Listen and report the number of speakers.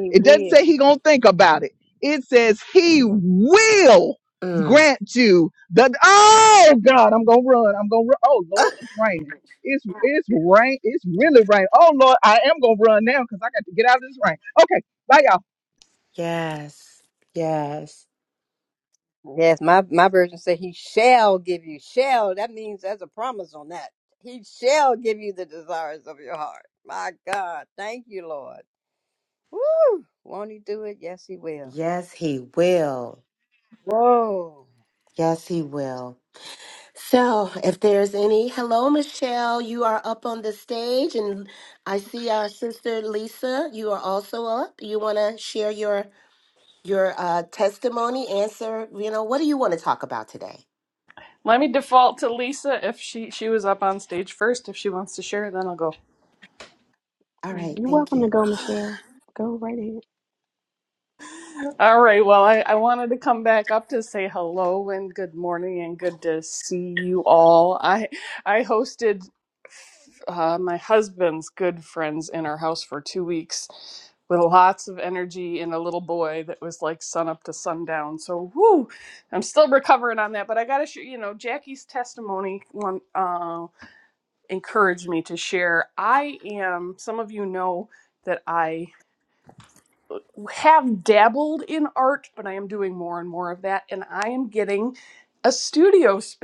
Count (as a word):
five